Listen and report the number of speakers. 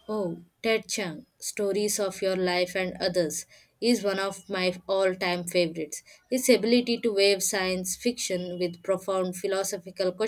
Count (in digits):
1